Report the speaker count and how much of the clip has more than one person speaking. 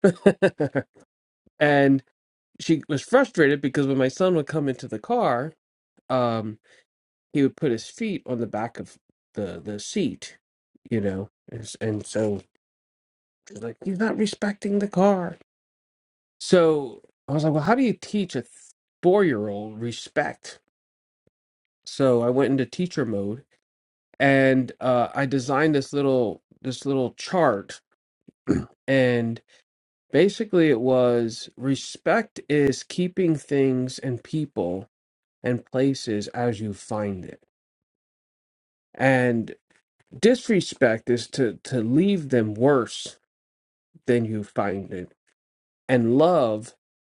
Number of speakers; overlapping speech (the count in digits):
1, no overlap